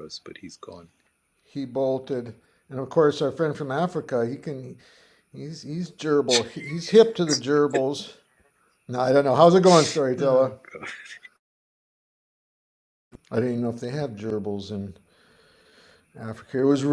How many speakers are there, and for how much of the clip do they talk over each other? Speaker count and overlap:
two, about 2%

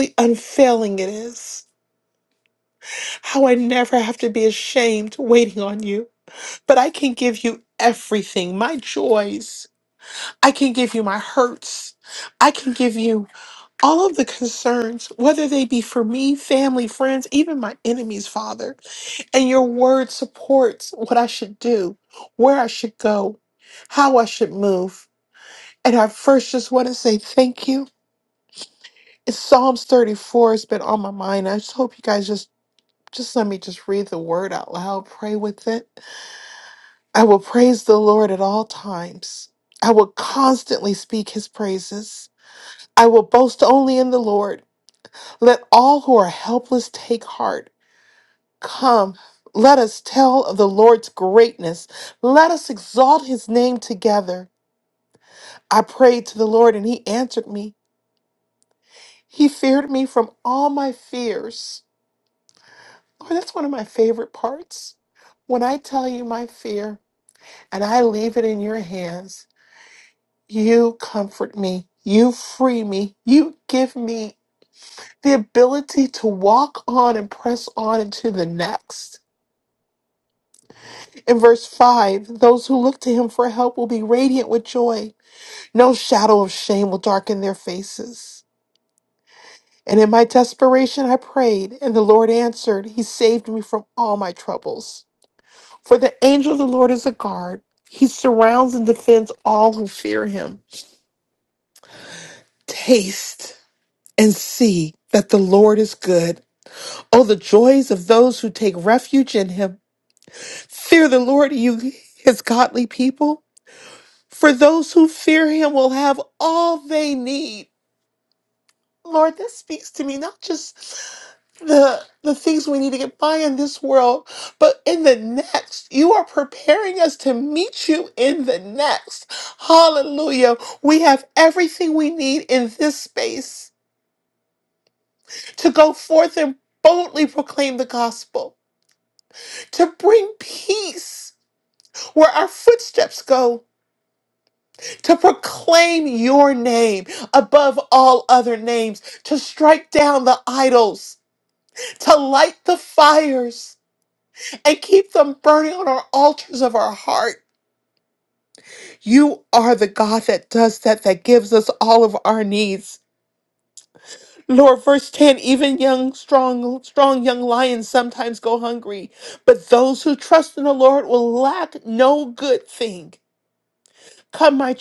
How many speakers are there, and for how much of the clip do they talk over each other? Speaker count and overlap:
one, no overlap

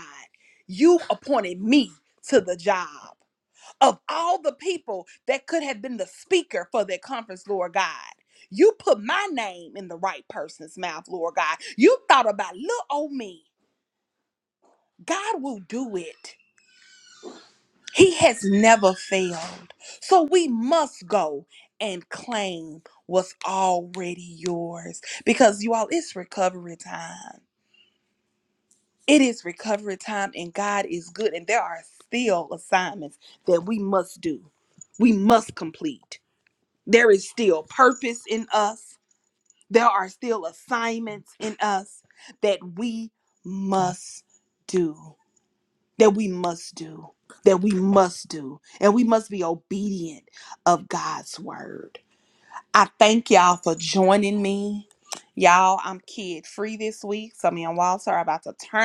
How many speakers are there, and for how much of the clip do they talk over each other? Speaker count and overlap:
one, no overlap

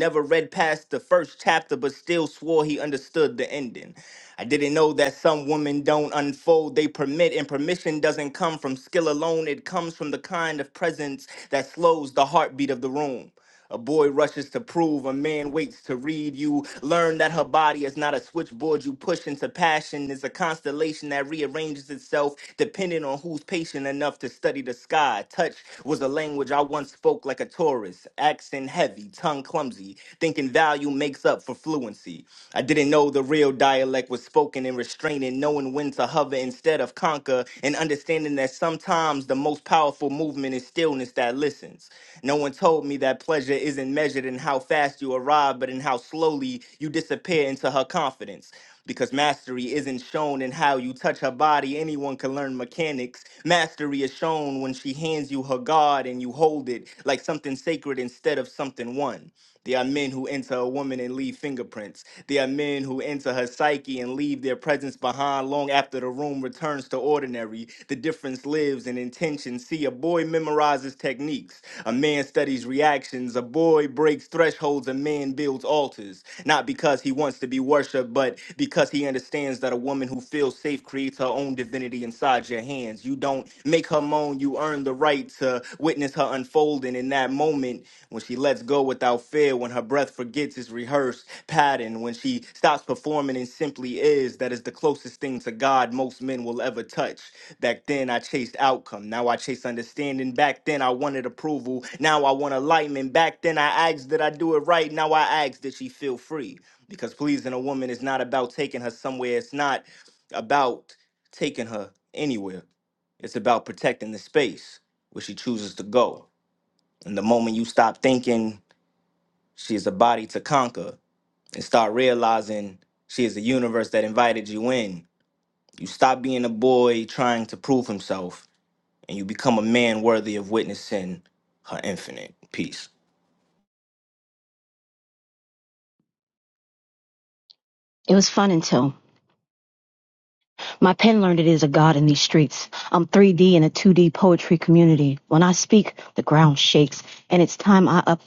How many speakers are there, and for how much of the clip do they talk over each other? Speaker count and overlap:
two, no overlap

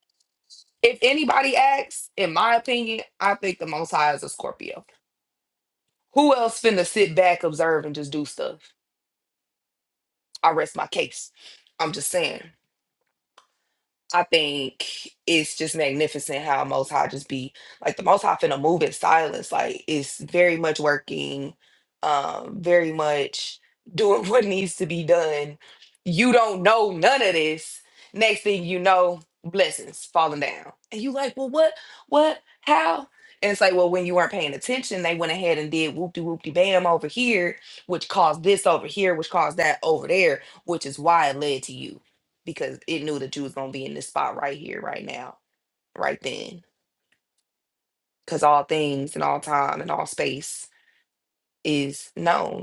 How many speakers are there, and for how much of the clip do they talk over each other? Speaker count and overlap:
one, no overlap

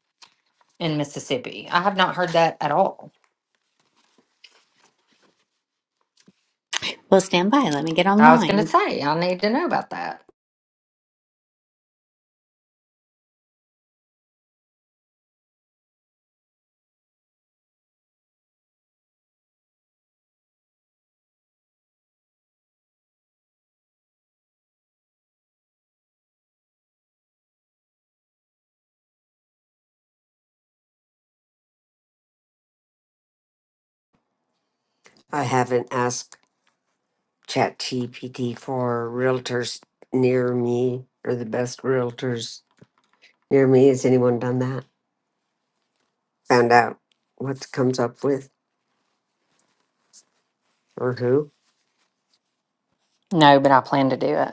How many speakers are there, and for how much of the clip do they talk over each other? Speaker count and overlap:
three, about 1%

